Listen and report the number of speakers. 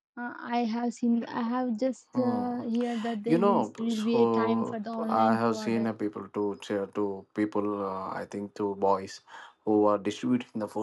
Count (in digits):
2